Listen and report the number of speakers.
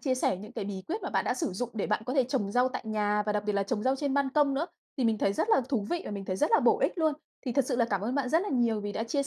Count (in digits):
1